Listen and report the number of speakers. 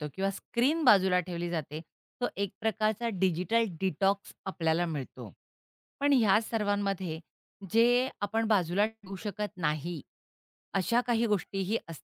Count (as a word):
one